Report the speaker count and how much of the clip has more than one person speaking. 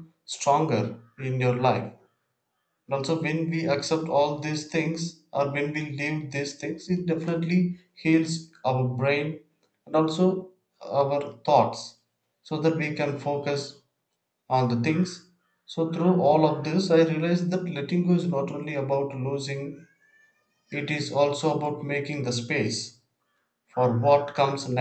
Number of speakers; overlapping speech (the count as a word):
one, no overlap